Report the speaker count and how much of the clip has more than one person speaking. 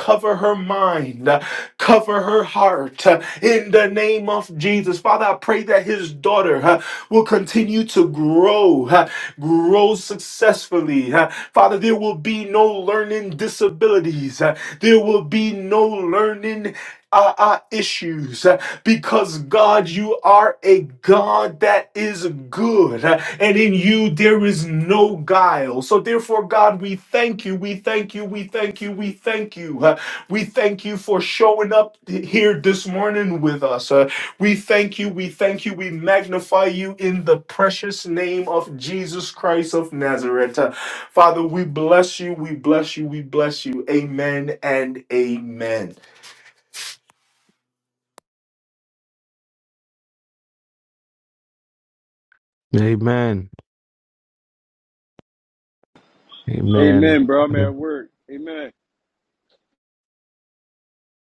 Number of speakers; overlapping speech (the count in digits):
3, about 1%